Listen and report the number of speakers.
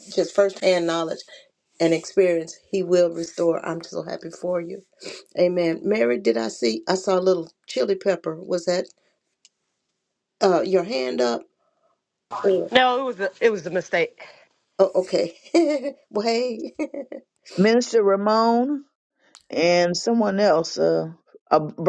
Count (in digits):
3